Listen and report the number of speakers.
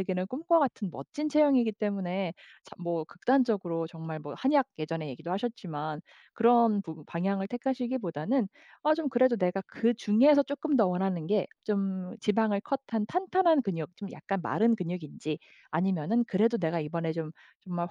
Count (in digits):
1